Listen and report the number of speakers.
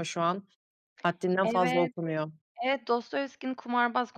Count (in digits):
2